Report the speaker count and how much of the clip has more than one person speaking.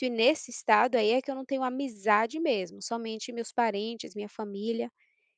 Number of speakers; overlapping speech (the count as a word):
one, no overlap